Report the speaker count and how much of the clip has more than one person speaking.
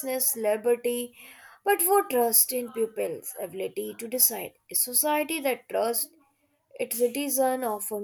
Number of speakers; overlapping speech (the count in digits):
1, no overlap